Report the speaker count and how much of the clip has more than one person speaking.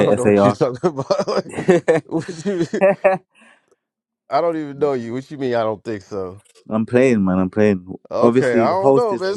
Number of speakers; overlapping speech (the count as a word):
two, about 20%